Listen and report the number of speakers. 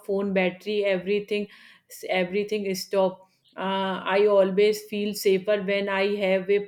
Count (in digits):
1